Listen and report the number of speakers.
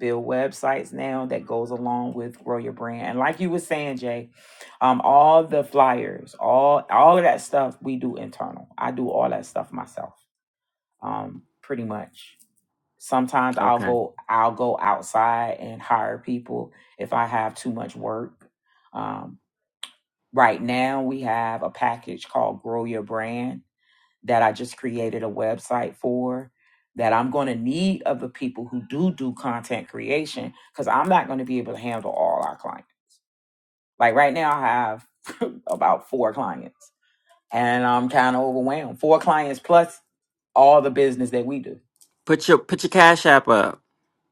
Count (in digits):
2